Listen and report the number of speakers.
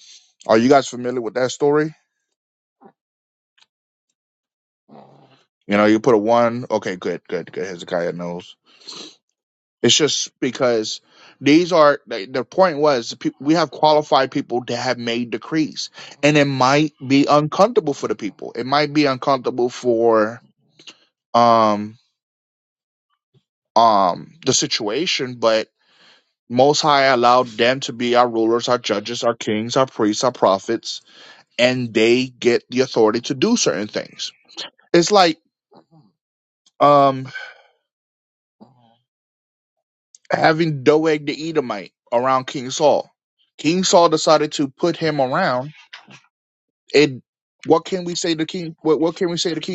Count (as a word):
one